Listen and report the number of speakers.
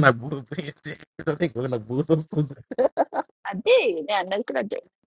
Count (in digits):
2